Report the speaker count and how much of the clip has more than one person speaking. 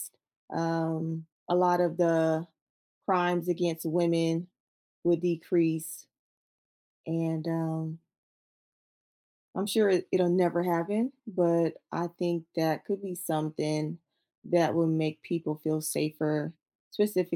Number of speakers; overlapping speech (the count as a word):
one, no overlap